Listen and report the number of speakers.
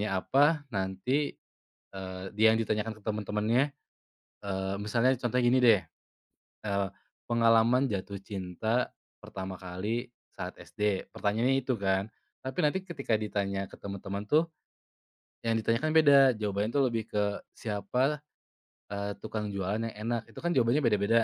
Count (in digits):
1